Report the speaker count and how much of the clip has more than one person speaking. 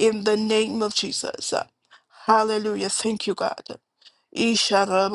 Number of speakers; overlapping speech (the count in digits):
1, no overlap